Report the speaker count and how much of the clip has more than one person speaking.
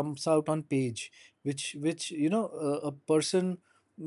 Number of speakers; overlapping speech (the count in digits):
1, no overlap